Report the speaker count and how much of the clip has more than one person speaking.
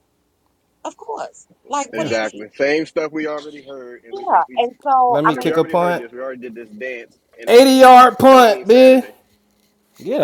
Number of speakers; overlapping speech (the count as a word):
three, about 27%